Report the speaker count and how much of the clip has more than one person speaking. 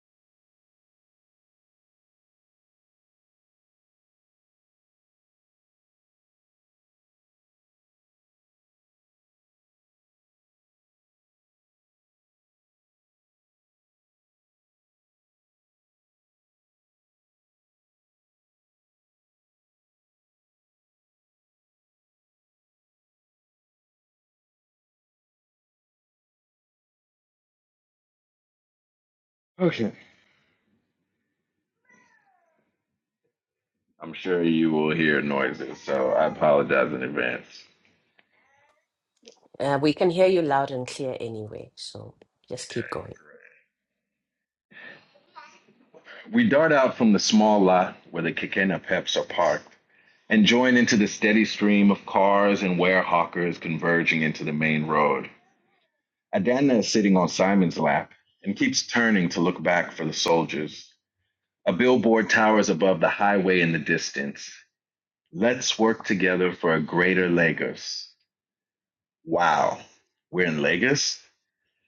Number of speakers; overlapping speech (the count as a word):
two, no overlap